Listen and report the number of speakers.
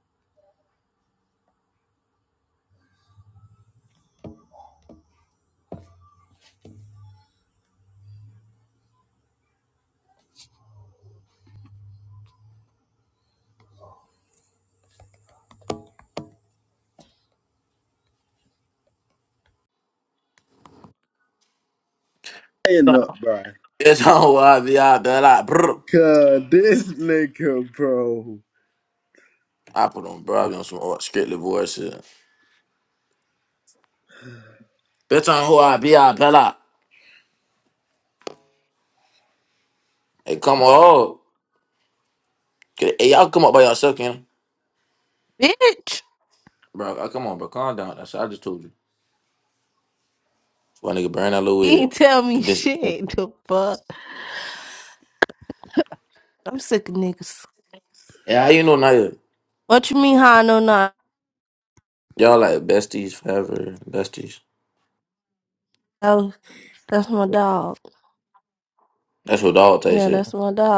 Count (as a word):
three